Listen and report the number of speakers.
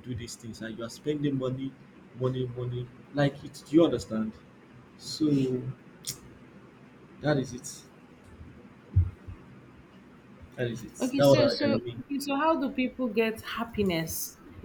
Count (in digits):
2